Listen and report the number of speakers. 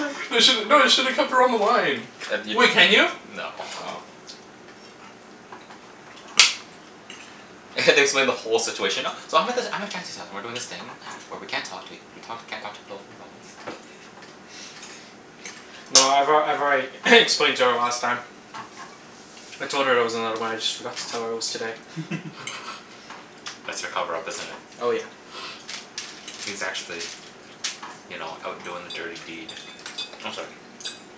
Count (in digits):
3